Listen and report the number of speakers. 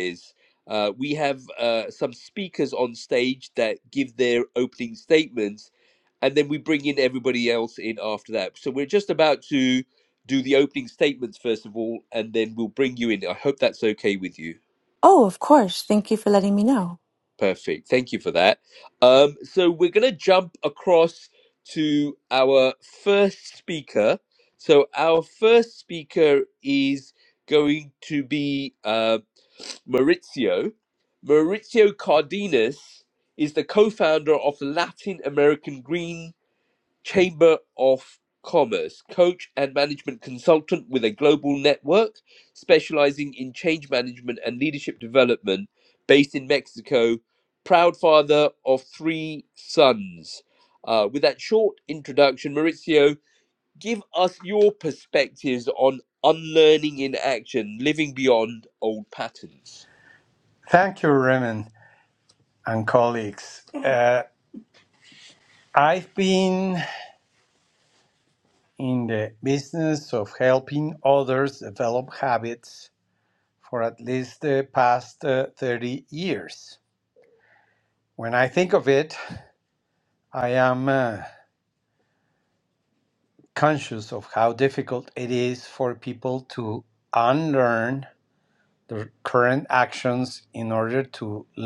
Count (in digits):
3